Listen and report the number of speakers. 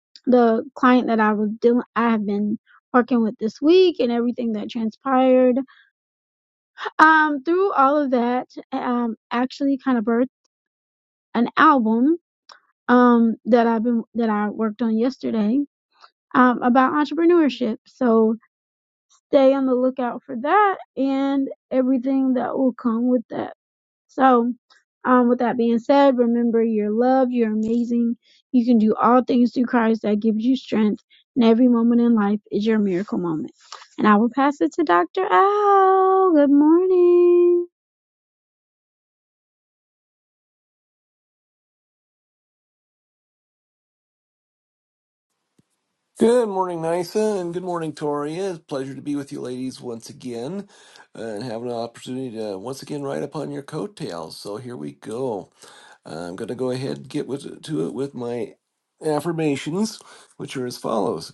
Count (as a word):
two